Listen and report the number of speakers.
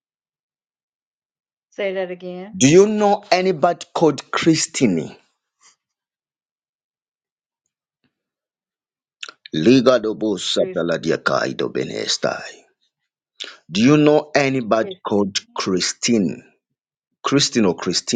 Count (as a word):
two